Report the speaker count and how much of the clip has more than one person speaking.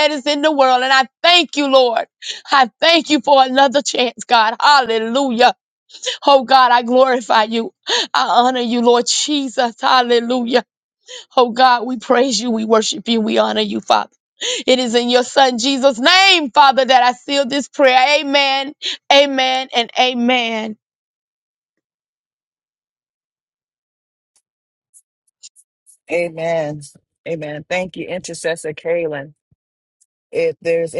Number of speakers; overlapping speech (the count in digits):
2, no overlap